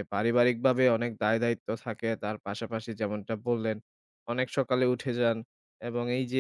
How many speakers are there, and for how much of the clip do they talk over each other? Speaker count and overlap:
1, no overlap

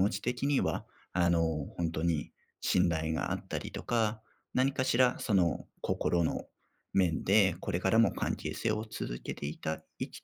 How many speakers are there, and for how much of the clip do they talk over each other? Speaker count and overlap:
1, no overlap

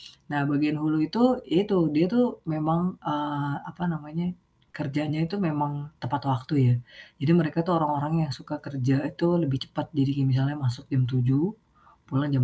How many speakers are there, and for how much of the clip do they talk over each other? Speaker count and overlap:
1, no overlap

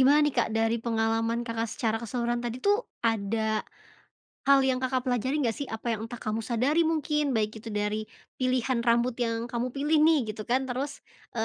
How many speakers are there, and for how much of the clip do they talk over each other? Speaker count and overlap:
1, no overlap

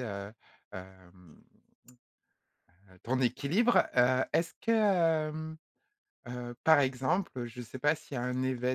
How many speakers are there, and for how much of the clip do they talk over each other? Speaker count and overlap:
1, no overlap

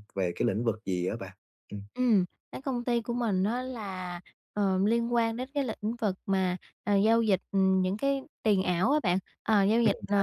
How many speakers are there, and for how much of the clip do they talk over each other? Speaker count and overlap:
2, about 4%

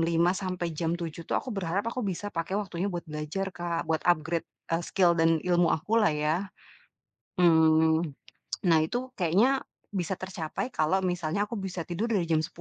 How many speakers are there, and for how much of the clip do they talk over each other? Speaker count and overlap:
1, no overlap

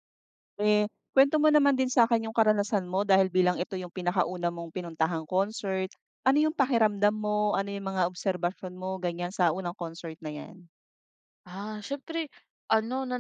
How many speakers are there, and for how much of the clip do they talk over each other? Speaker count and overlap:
2, no overlap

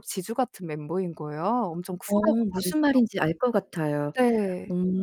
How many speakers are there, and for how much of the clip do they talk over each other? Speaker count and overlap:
2, about 19%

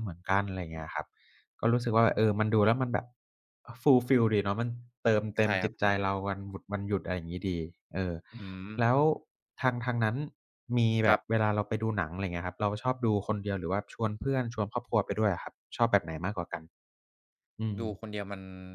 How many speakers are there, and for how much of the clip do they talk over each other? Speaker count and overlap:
2, about 3%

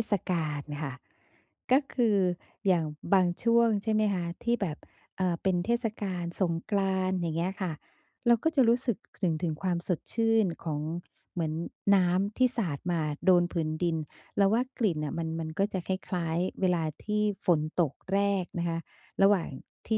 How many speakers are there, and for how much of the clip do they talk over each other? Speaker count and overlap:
1, no overlap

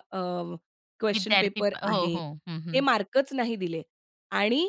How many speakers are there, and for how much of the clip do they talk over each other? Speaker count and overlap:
2, about 25%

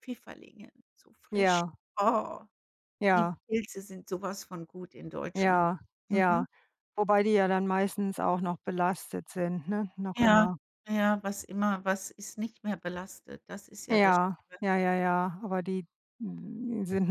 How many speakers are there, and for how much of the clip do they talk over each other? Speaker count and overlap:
2, about 11%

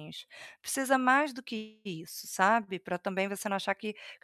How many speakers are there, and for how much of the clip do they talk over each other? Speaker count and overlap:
1, no overlap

